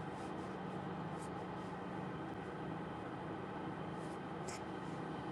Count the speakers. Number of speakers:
0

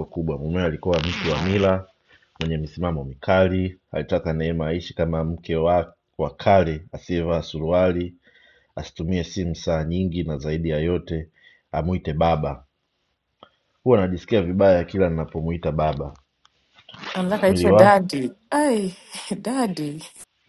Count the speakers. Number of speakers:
2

